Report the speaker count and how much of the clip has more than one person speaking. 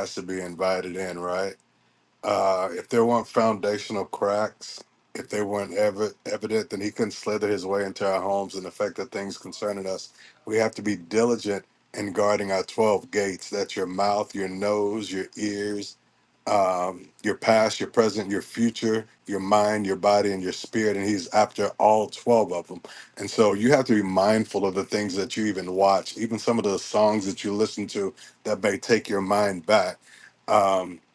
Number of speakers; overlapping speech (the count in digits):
1, no overlap